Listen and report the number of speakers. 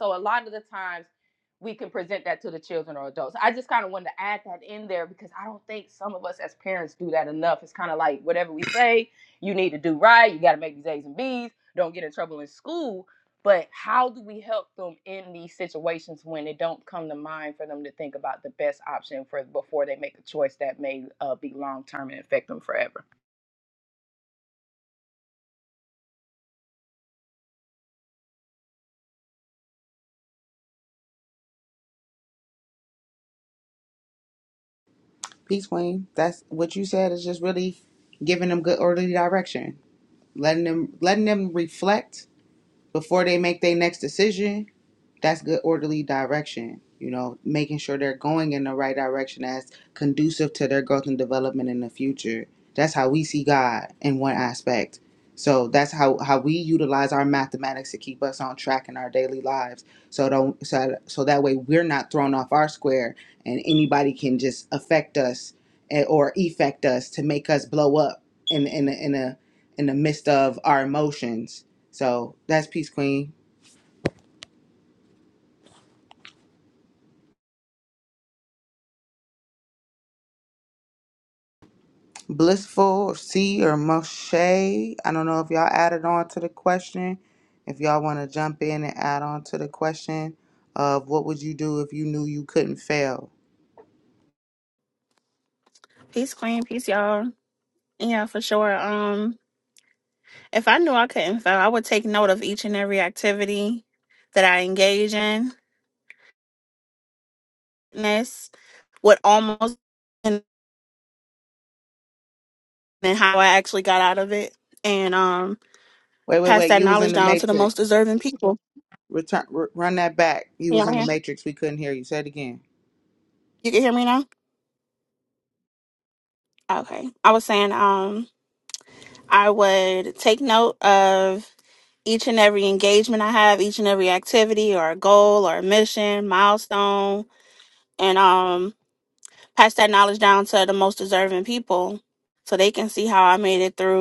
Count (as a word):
three